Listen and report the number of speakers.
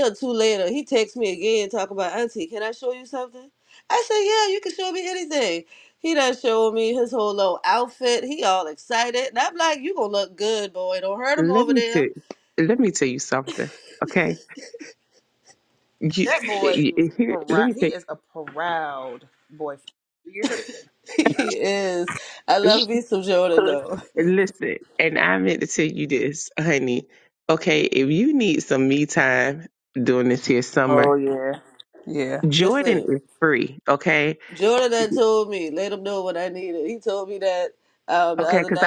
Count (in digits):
3